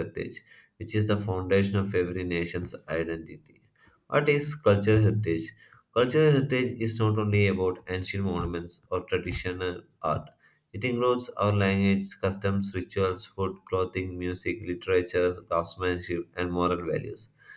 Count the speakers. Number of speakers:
1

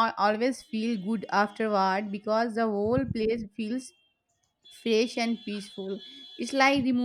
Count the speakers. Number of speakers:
1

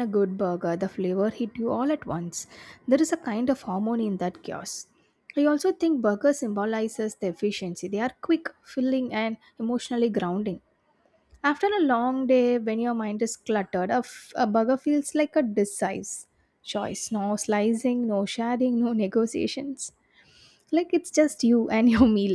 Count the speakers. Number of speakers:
1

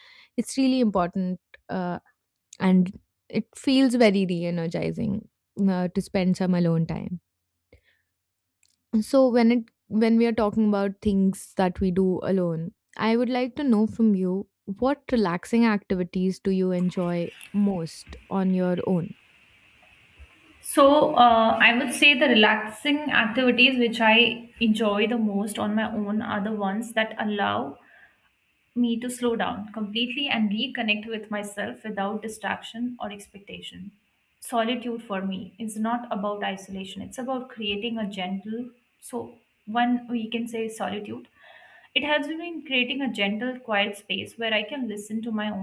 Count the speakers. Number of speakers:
2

